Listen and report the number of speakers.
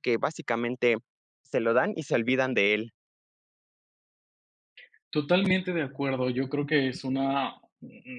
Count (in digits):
2